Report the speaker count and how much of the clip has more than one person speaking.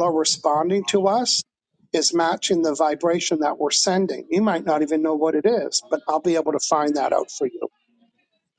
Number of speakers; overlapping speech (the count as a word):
one, no overlap